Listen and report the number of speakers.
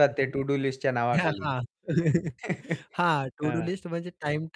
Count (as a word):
two